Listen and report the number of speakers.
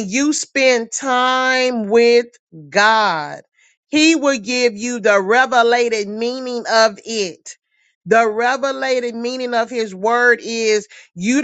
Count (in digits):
1